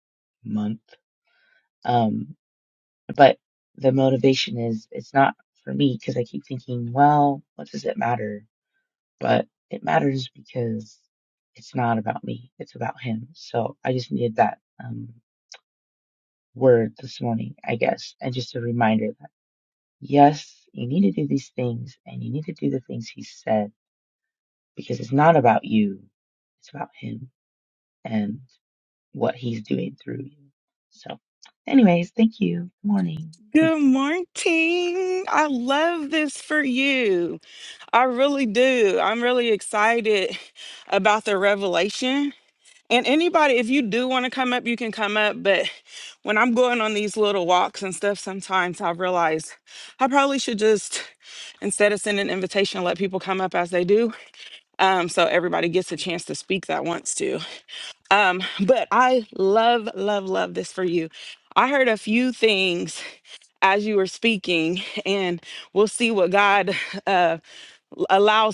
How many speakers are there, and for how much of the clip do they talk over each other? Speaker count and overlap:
2, no overlap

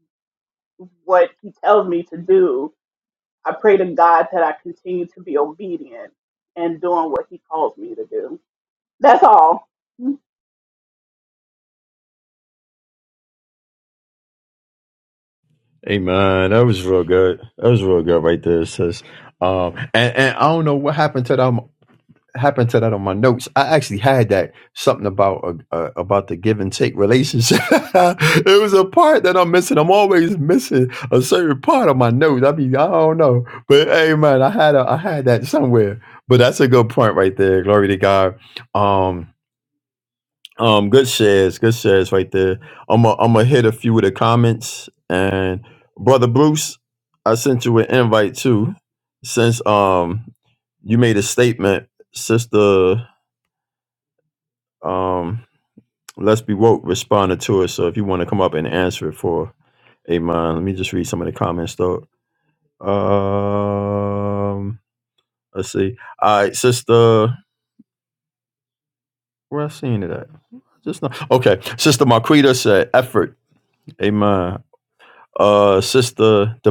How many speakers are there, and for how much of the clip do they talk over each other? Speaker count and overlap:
2, no overlap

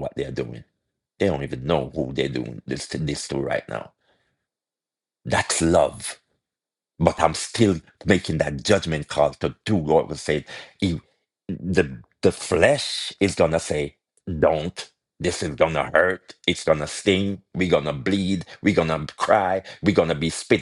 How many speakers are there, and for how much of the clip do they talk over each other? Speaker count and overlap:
1, no overlap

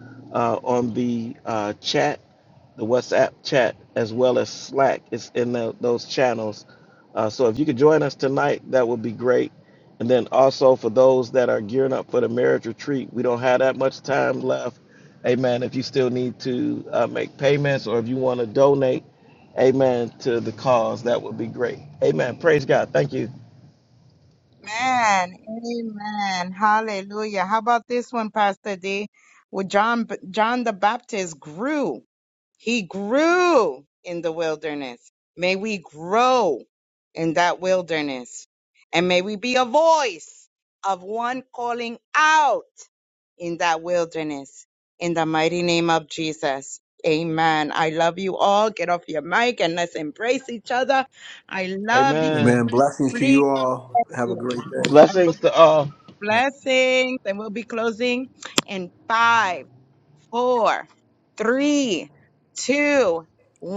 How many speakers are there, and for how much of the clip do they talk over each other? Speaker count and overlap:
3, about 3%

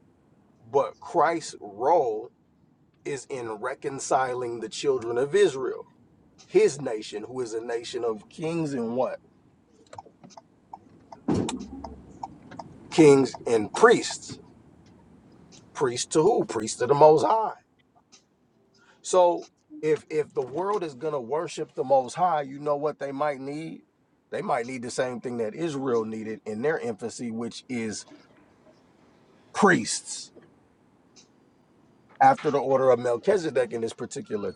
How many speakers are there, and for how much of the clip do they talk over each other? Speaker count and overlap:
1, no overlap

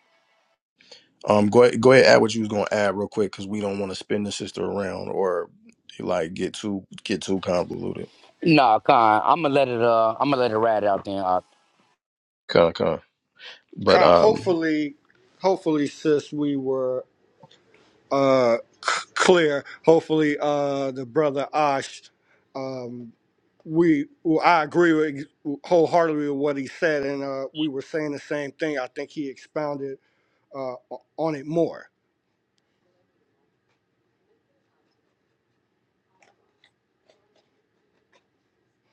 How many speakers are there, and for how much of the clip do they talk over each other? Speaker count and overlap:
3, about 2%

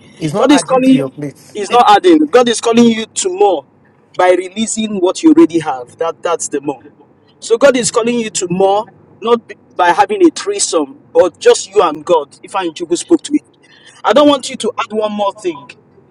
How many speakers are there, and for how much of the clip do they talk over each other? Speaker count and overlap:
2, about 4%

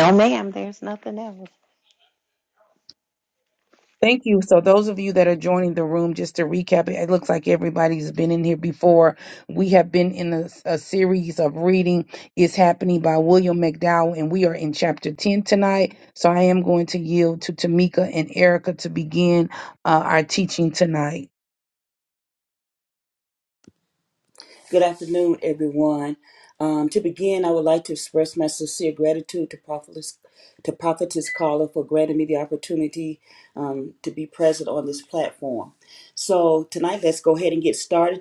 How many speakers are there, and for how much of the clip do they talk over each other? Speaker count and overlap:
3, no overlap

